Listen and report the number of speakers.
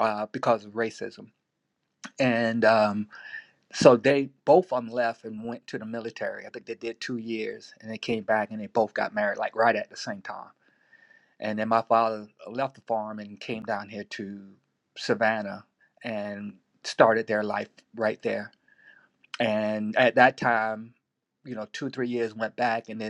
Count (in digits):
1